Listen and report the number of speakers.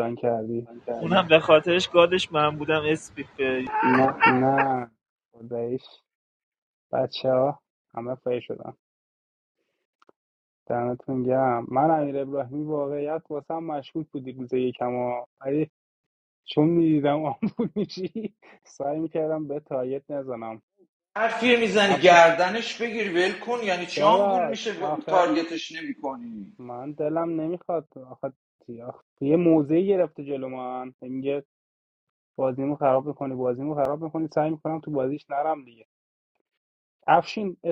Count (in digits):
3